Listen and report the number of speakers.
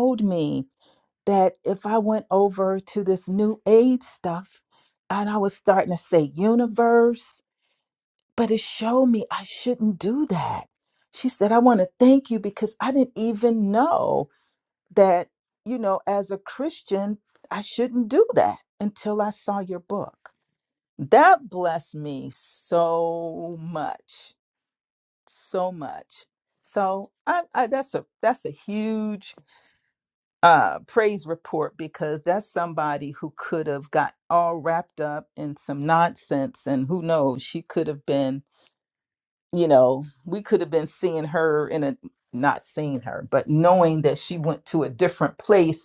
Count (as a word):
one